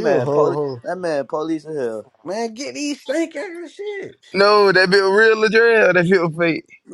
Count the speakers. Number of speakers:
three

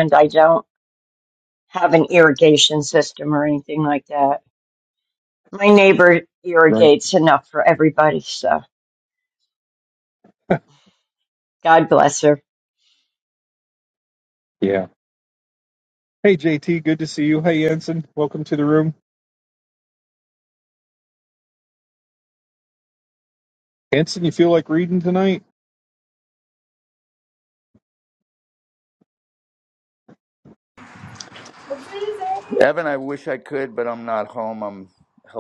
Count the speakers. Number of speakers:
three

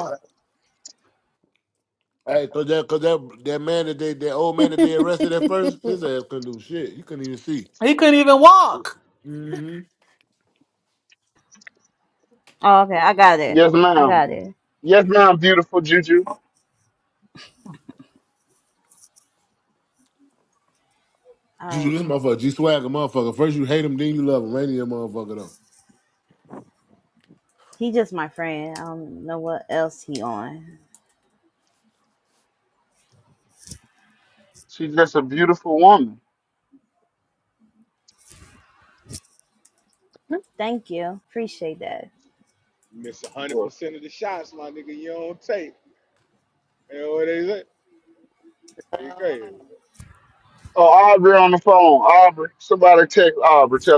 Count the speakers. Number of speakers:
five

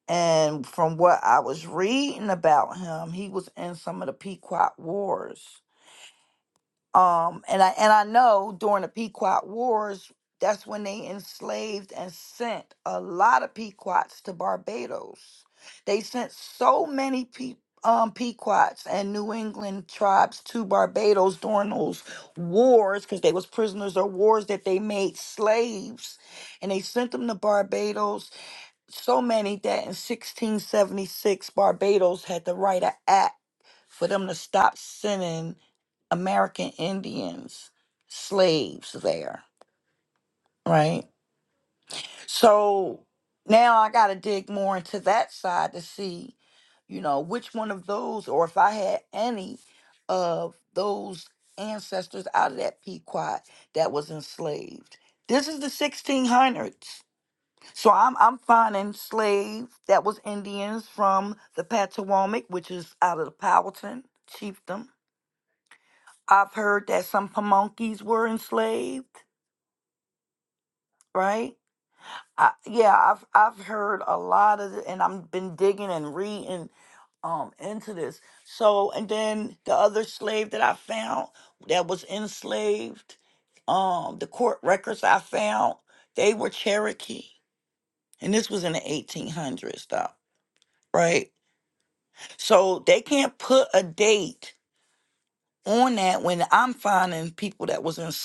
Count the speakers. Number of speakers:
one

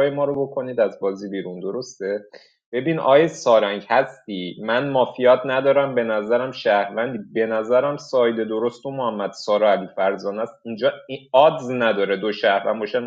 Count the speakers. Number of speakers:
one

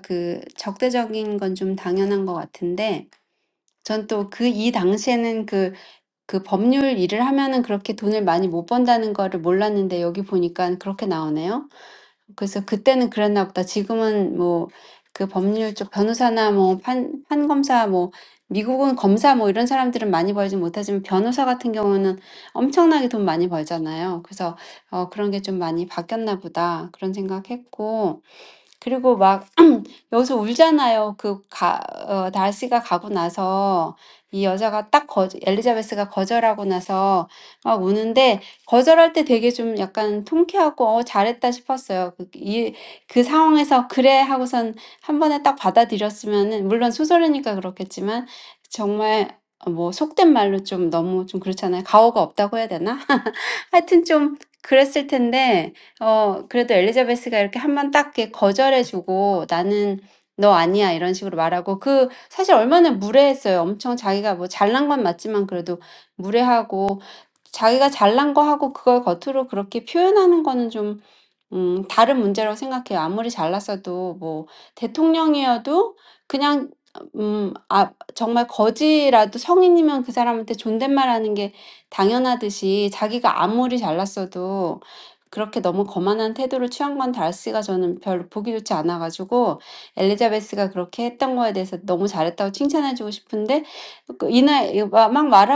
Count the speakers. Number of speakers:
one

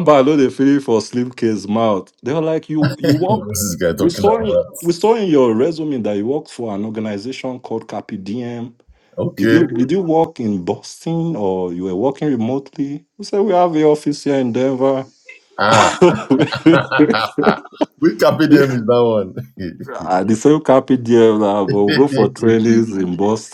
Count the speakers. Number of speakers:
two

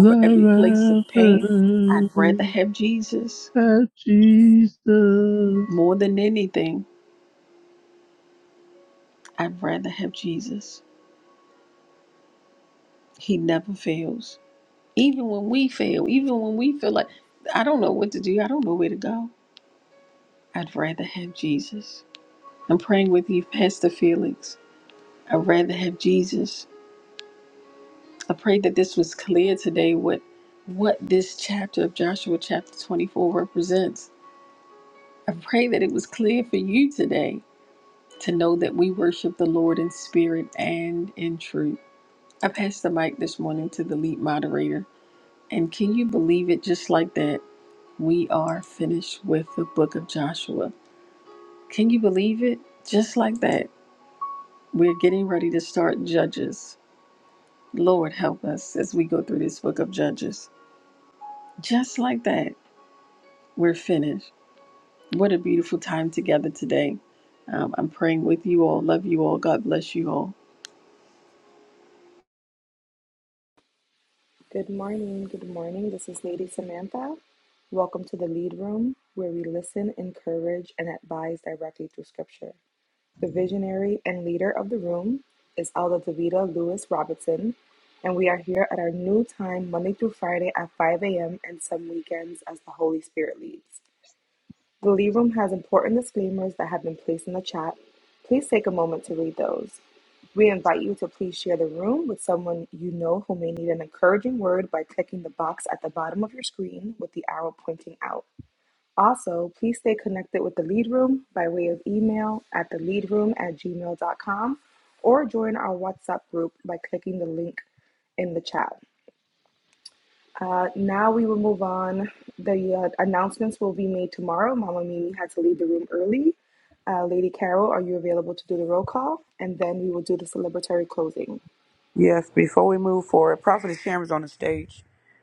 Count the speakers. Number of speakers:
four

